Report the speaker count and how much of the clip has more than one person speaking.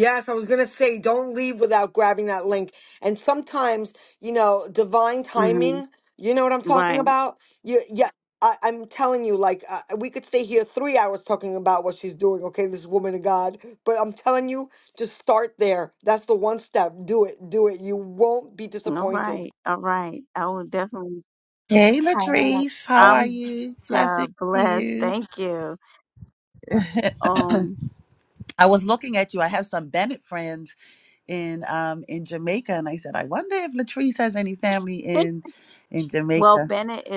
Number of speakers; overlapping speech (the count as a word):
three, about 11%